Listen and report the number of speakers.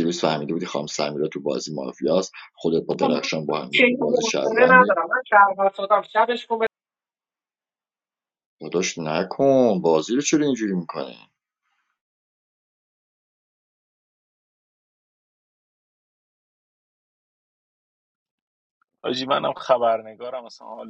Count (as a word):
three